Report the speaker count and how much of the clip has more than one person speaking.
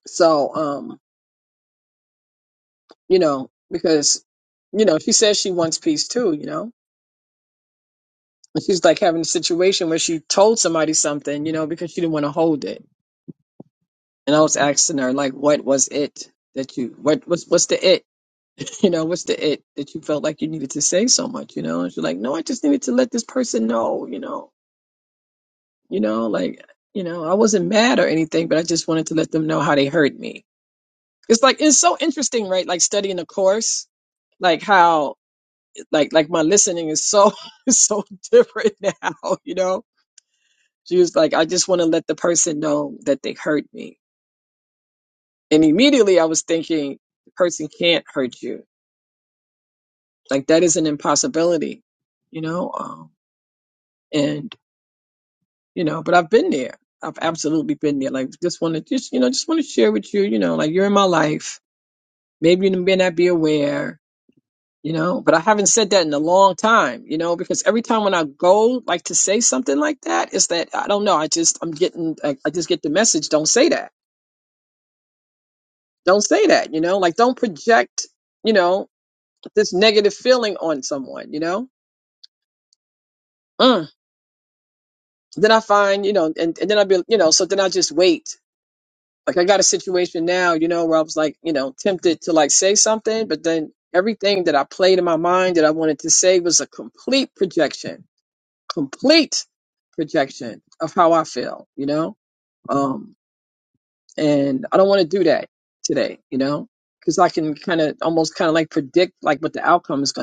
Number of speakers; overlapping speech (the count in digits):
1, no overlap